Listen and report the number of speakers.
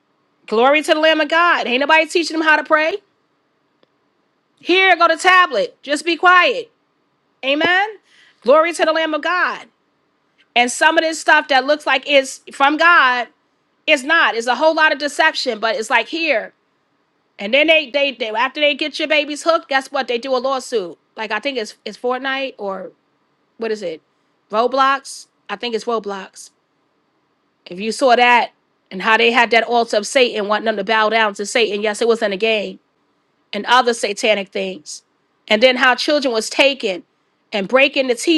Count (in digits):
1